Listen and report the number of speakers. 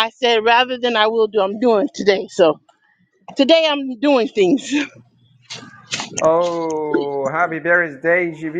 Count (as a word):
two